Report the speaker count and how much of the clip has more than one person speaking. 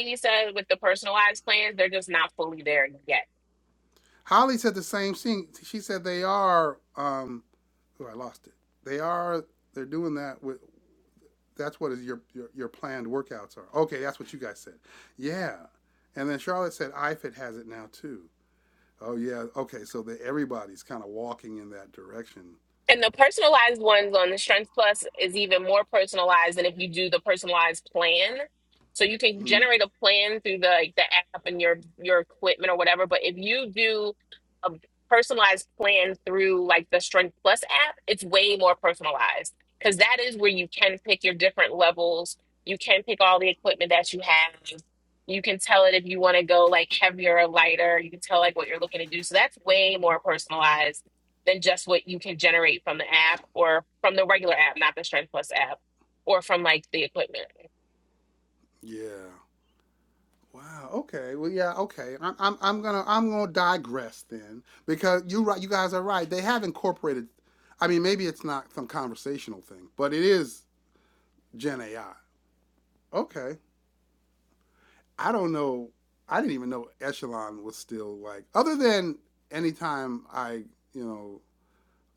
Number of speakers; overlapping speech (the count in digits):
2, under 1%